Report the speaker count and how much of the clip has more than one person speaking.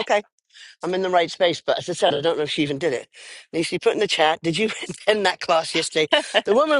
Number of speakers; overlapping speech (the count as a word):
one, no overlap